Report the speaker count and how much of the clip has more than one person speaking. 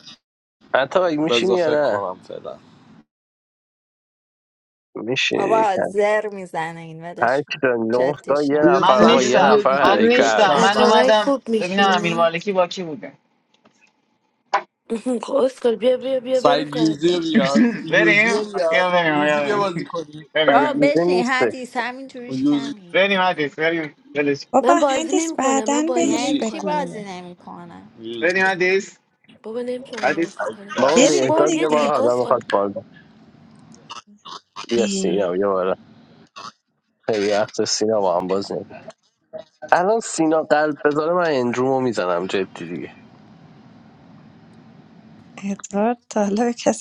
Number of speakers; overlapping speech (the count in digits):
6, about 32%